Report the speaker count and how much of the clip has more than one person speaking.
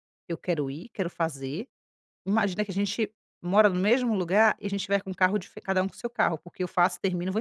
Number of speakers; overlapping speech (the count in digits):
1, no overlap